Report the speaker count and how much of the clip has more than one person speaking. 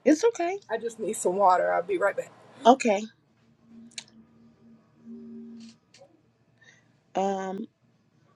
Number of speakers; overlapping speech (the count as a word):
two, no overlap